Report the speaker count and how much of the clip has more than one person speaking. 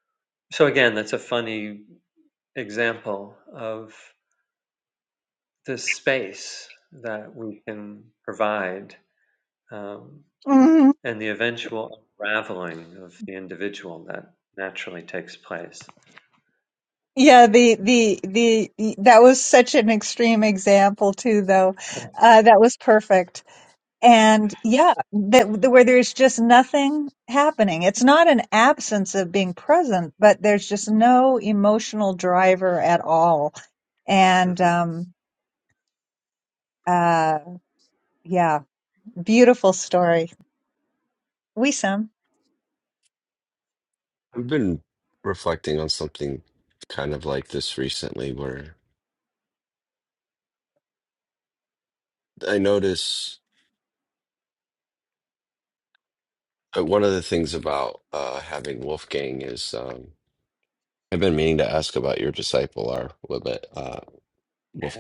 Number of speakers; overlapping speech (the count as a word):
three, under 1%